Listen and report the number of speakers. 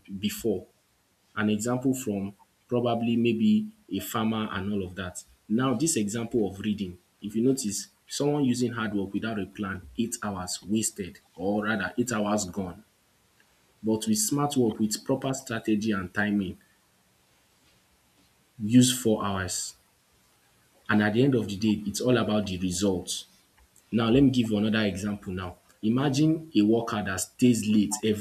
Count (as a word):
one